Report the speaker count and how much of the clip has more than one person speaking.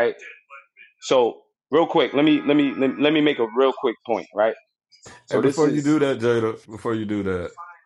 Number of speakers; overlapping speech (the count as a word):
two, about 8%